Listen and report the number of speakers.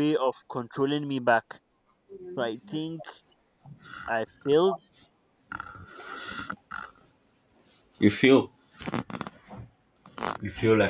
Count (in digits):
2